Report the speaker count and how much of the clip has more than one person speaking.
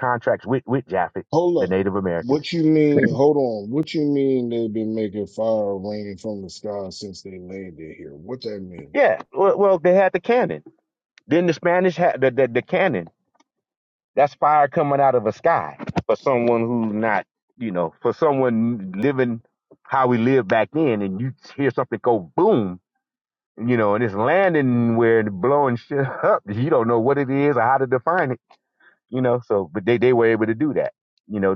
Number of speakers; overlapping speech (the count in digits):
2, about 1%